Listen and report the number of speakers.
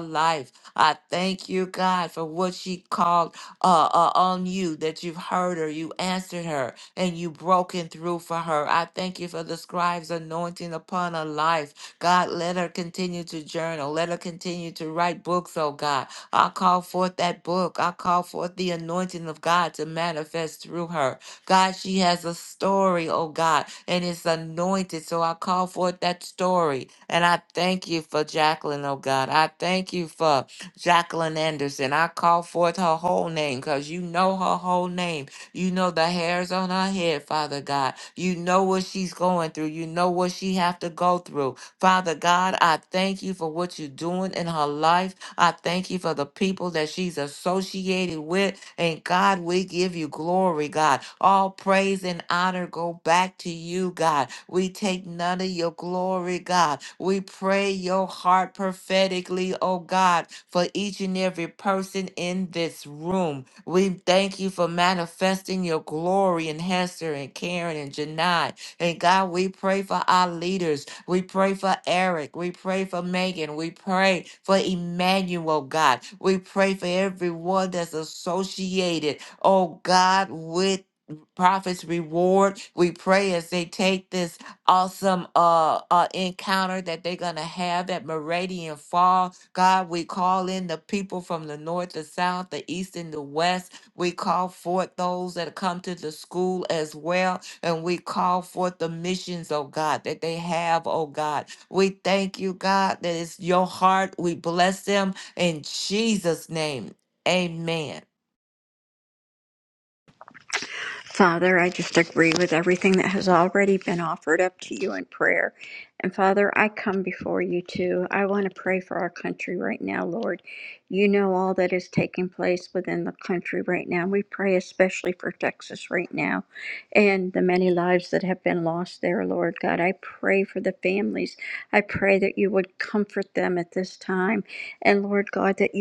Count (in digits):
2